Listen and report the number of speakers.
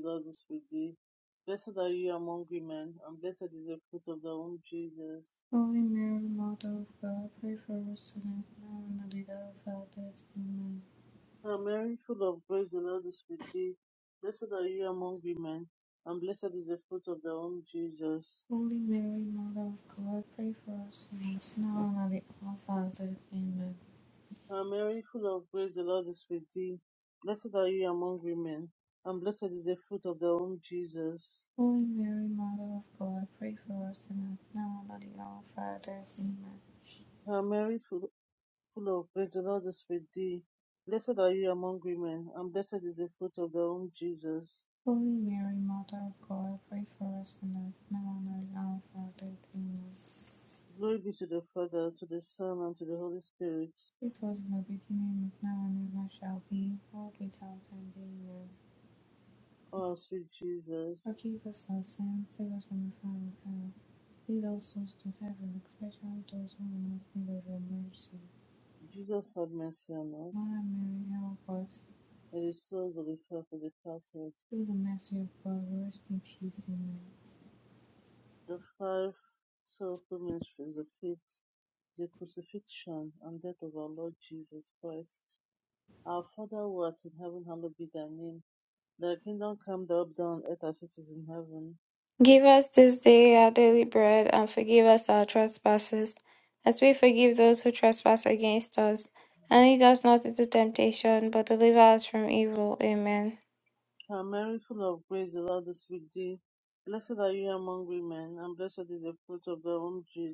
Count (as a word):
three